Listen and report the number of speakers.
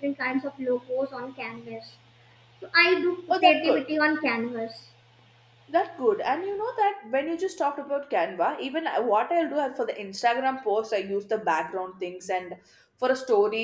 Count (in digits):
2